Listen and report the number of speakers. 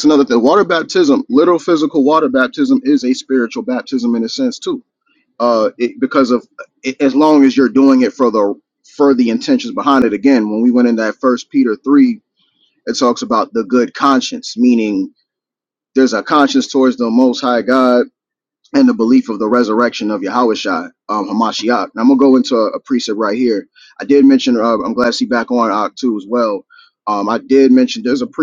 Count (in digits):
1